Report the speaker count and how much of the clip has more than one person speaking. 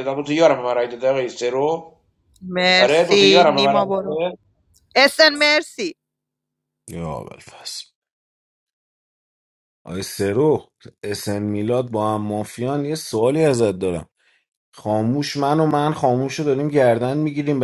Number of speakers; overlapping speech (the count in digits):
3, about 8%